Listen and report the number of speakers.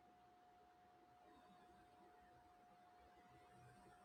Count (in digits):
0